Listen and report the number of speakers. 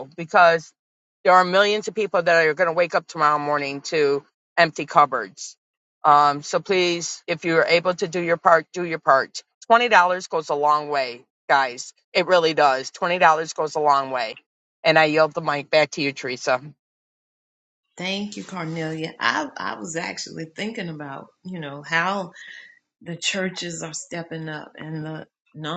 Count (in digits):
2